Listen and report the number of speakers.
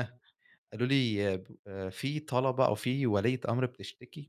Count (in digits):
1